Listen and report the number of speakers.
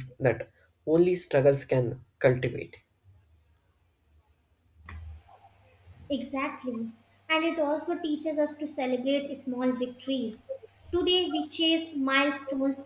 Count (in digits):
2